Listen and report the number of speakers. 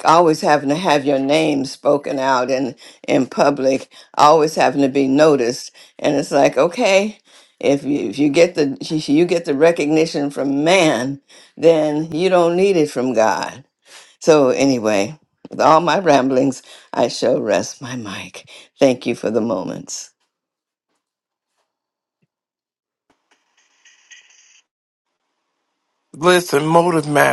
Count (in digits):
2